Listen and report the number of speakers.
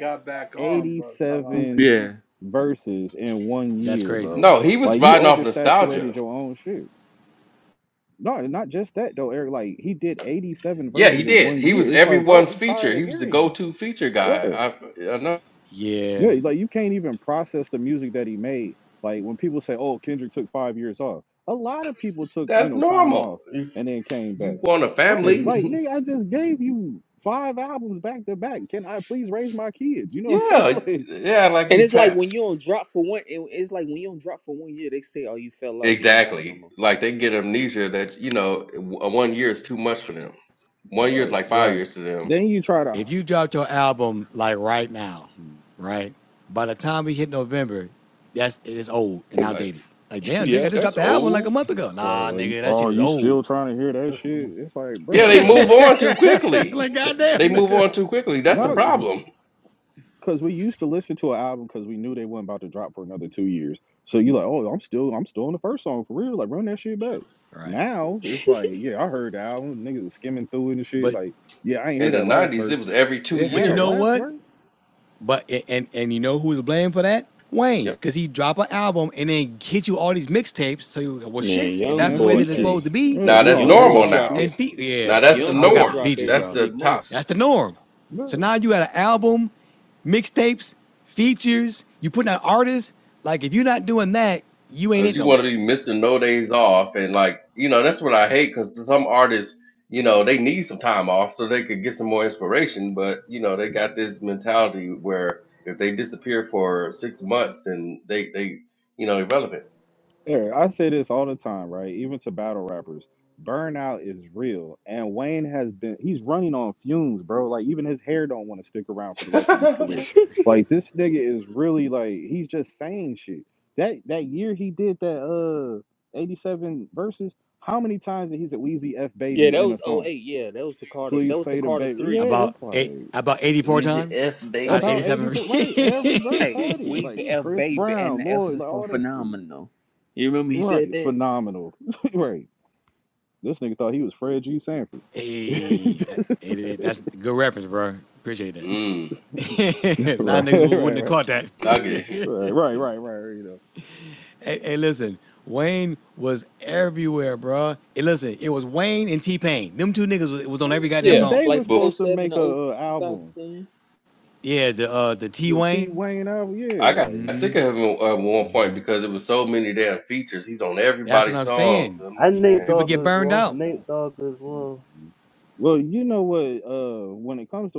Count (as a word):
six